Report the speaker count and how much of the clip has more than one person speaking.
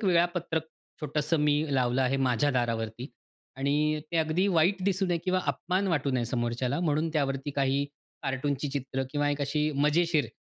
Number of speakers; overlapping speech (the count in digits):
1, no overlap